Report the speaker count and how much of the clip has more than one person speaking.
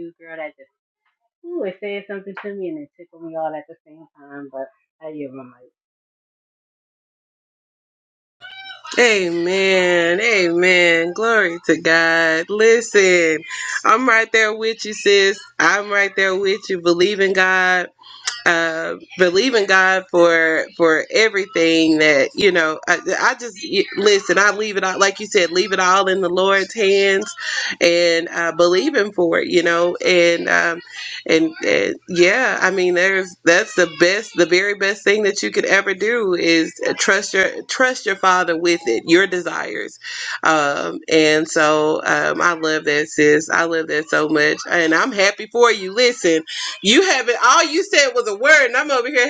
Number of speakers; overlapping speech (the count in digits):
2, no overlap